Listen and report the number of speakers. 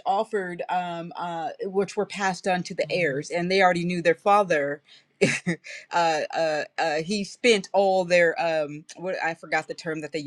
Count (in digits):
1